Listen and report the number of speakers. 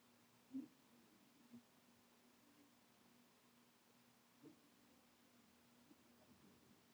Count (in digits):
0